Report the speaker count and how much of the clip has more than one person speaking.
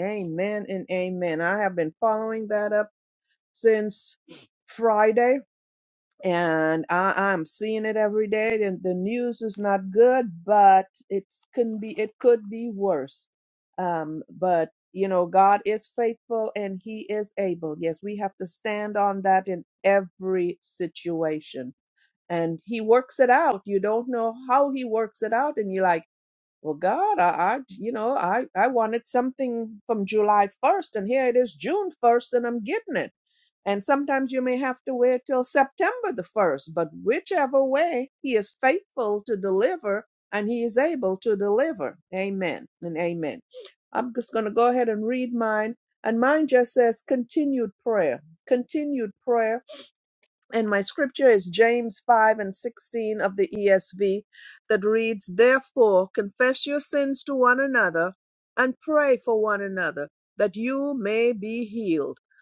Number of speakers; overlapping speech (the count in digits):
1, no overlap